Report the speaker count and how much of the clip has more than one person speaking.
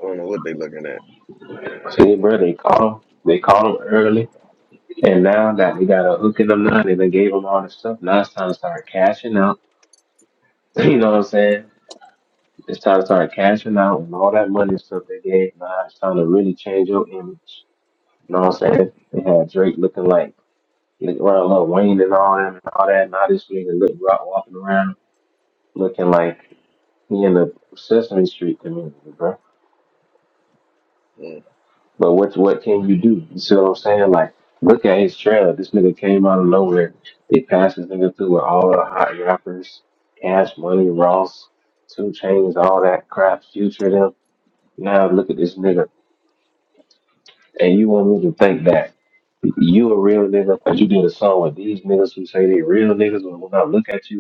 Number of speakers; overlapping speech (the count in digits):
2, no overlap